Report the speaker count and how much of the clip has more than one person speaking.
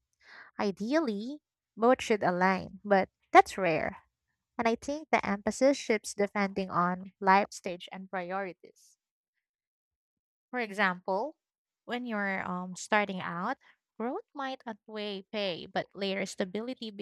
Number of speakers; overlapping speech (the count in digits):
1, no overlap